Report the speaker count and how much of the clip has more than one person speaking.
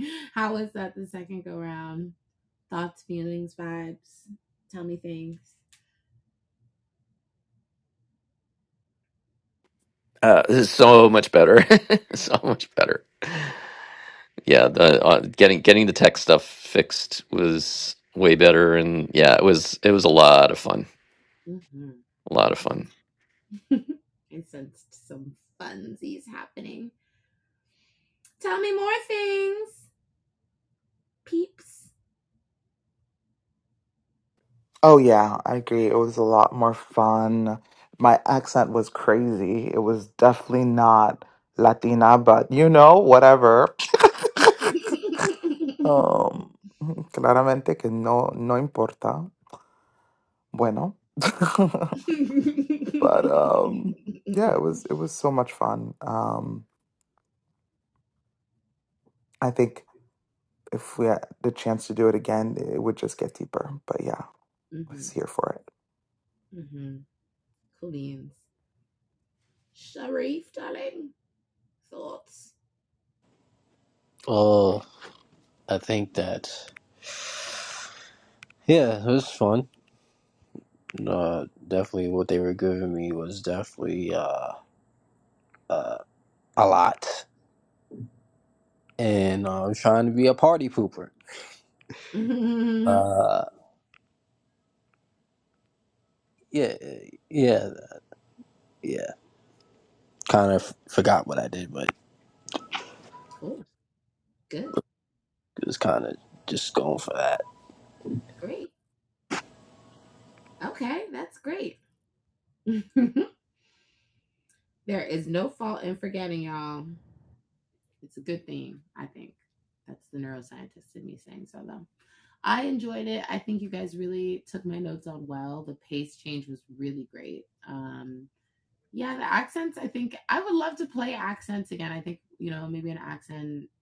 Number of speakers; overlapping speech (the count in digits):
4, under 1%